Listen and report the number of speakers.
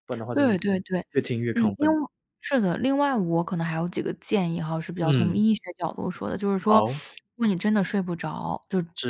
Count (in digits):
2